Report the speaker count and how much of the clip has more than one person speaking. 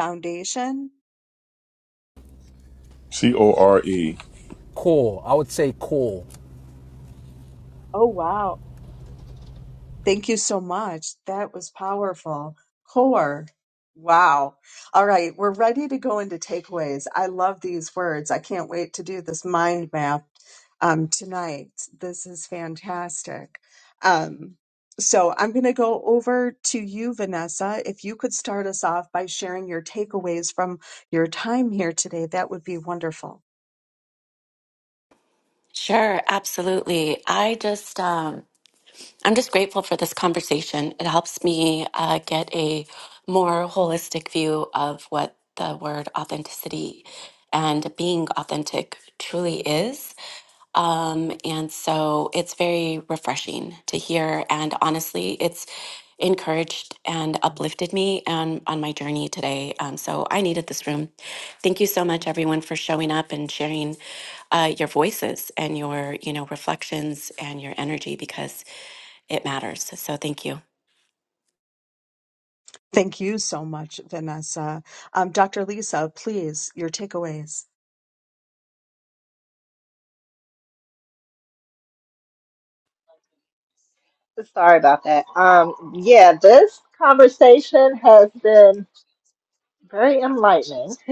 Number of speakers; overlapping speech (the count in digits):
5, no overlap